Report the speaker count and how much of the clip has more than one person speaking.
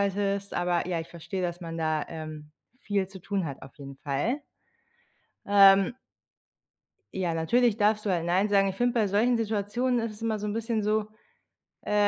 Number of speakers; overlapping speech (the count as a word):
one, no overlap